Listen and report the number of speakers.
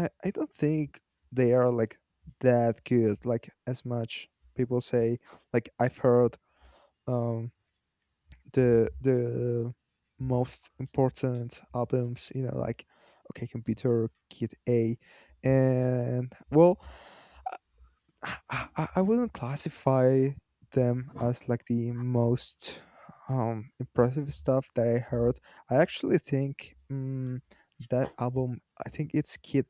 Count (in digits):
1